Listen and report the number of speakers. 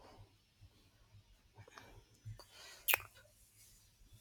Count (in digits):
0